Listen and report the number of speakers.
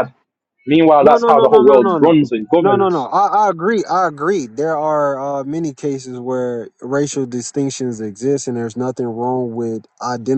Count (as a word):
two